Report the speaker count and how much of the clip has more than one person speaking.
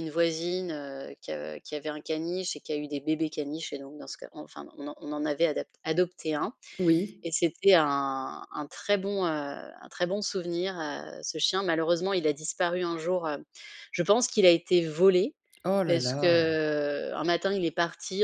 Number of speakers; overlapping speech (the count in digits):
2, about 3%